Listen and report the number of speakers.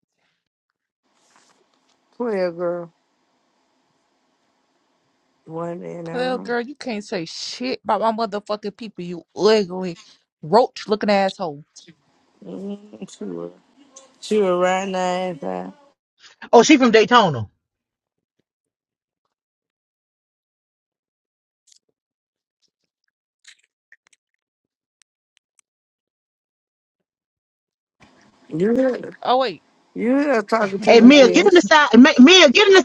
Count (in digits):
3